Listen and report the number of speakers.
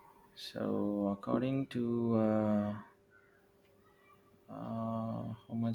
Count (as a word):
one